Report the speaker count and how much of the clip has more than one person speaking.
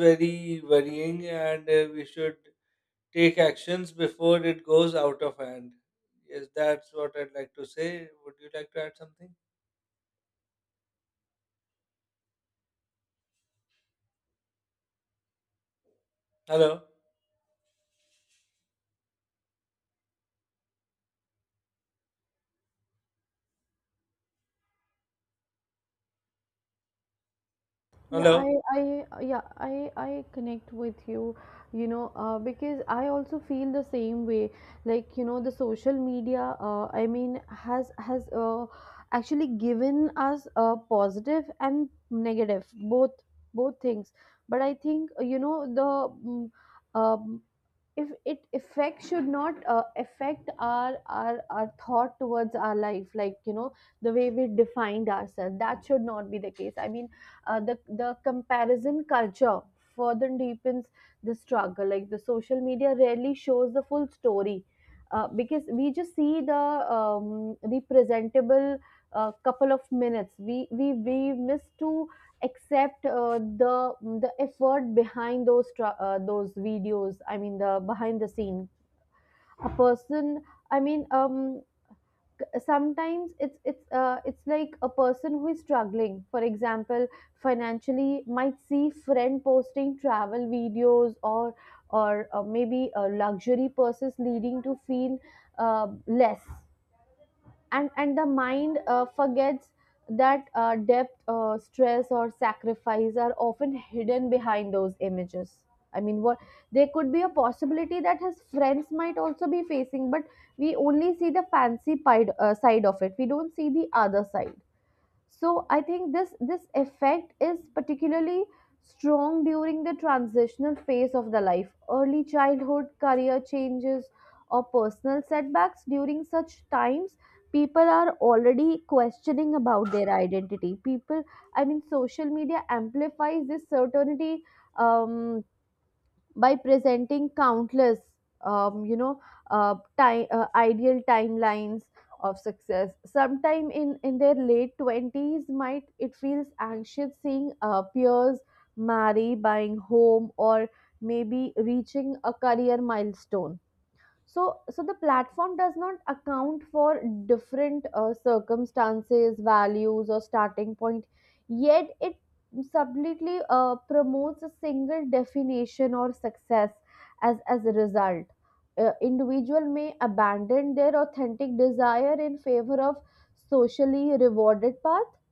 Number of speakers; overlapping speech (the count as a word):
two, under 1%